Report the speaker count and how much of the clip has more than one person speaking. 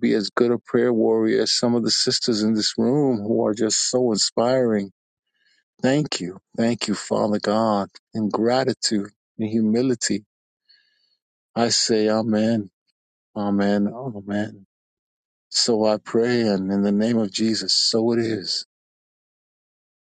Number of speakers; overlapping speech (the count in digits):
1, no overlap